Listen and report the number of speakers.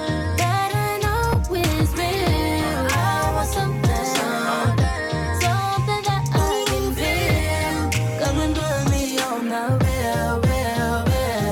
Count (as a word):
zero